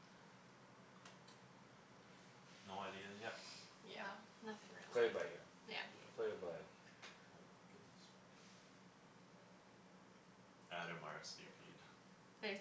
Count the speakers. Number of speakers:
3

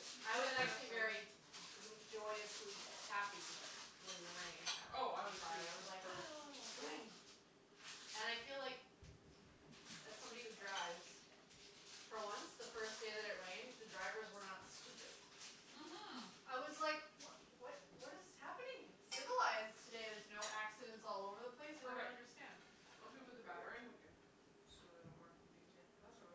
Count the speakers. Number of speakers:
2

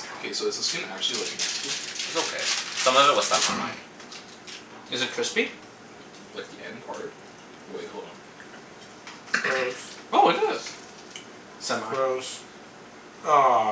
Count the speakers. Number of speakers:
4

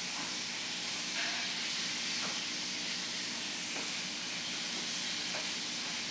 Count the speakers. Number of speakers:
0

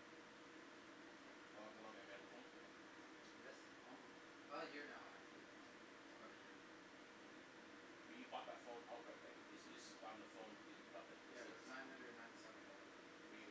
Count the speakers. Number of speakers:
2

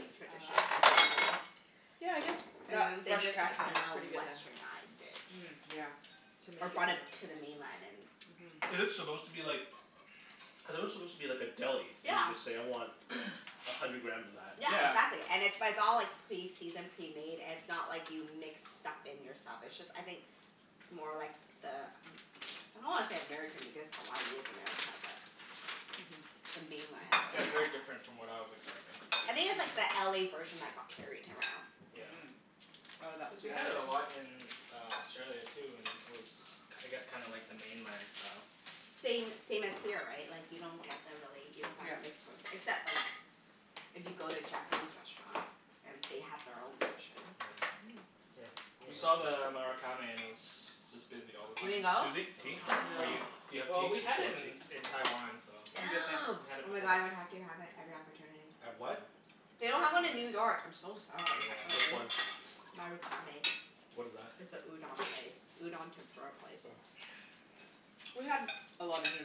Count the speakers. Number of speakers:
4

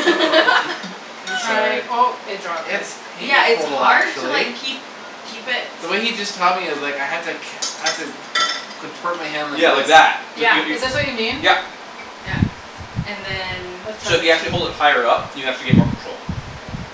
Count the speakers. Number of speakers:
4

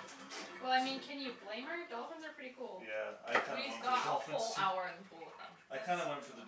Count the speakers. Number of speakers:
3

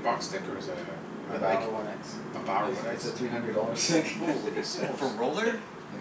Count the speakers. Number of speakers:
3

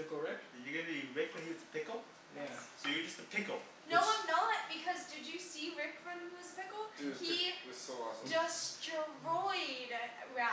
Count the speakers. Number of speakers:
4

